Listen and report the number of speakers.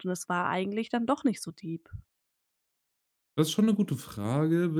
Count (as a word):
two